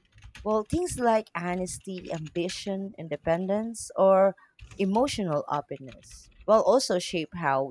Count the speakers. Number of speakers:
1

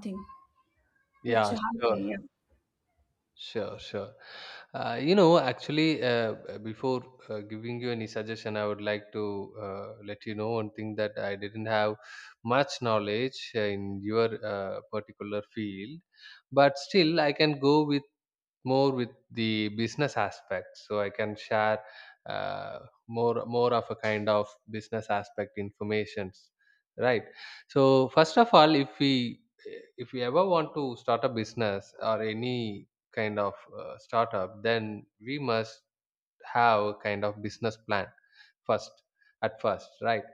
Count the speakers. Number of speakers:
2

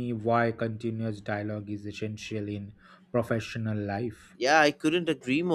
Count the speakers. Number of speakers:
2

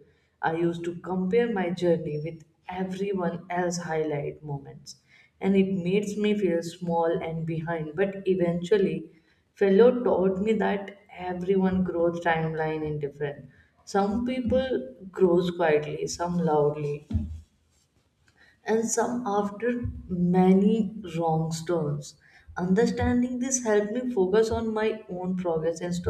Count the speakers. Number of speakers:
1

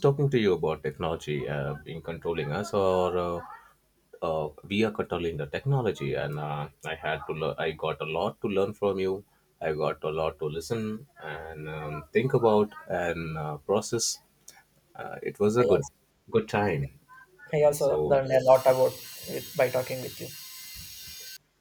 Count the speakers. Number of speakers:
2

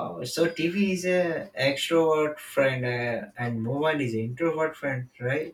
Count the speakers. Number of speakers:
1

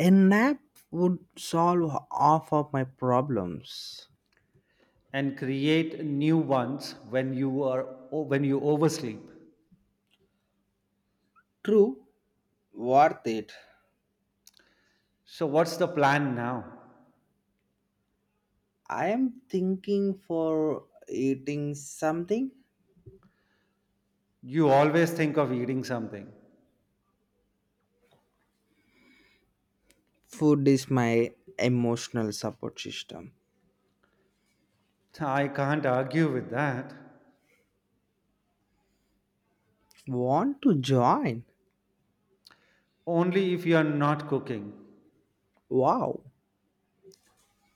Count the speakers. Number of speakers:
2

